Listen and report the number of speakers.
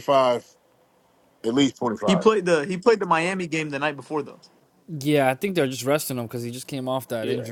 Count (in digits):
3